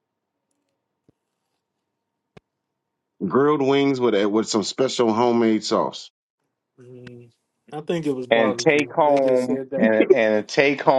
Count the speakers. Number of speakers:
three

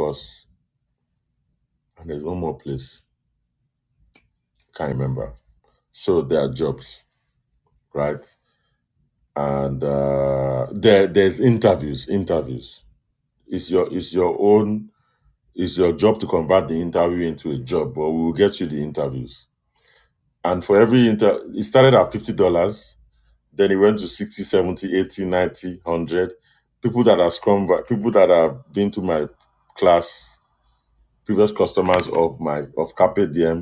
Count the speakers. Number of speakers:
one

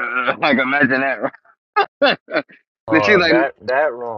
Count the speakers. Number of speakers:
two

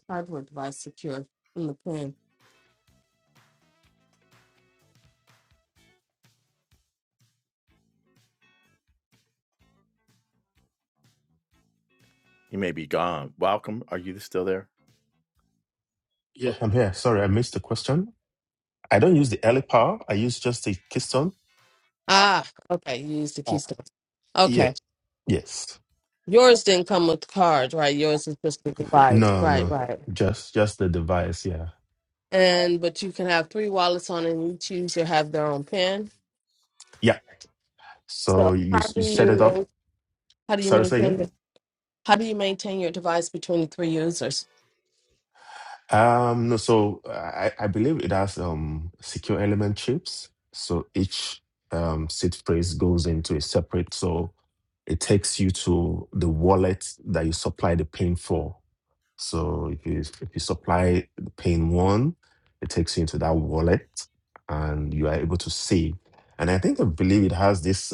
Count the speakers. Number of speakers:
three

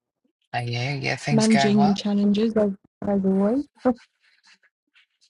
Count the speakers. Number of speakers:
two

